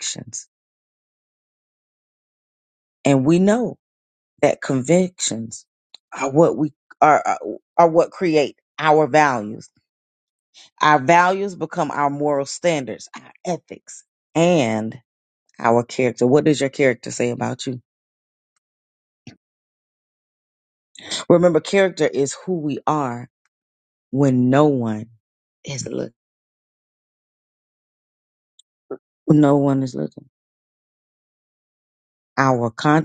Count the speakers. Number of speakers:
1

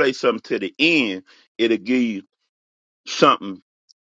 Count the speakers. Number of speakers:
1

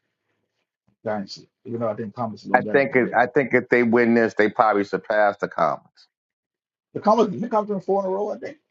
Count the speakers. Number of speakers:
2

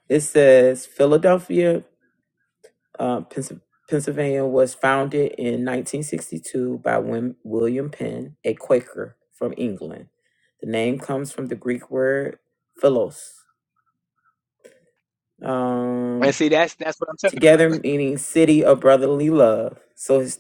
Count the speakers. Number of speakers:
2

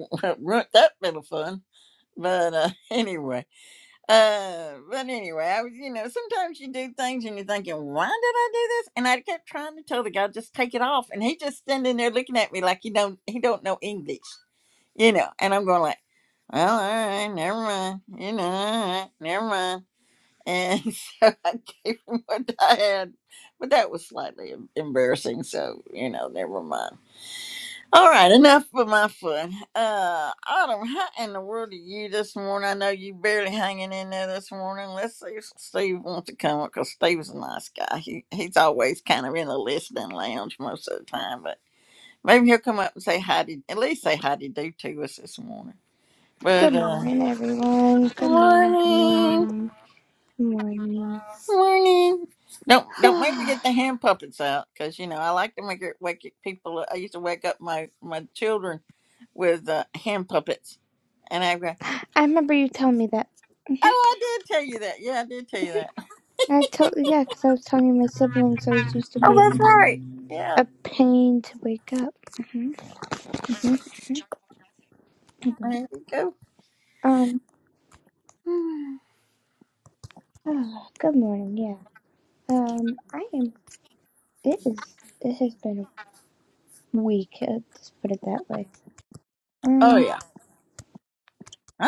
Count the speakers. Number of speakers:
2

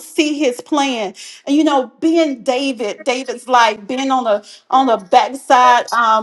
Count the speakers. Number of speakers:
1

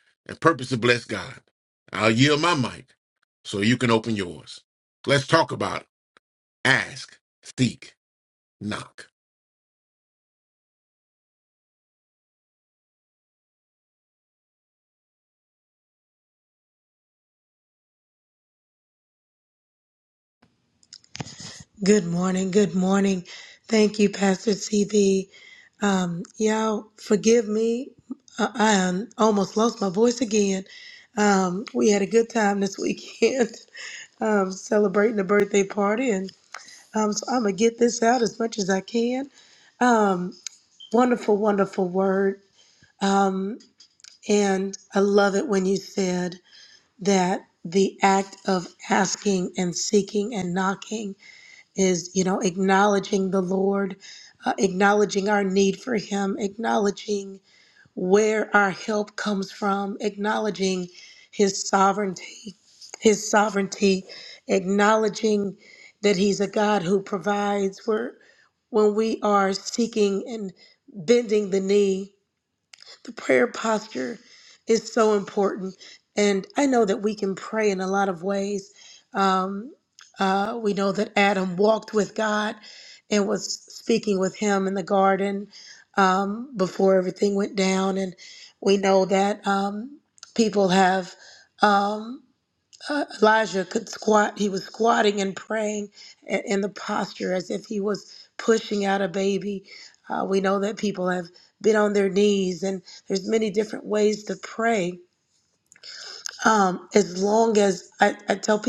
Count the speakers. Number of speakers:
2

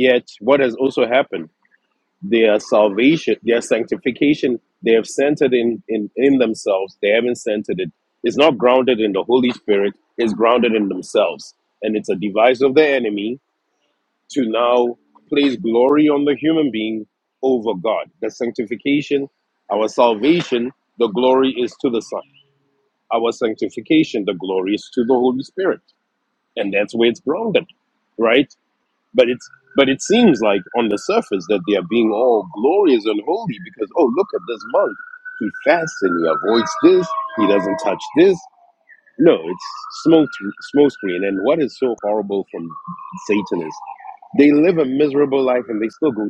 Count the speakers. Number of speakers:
1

